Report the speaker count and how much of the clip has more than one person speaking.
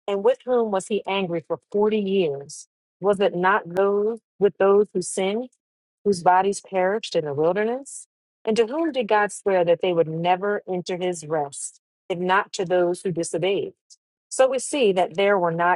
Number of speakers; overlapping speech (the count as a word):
one, no overlap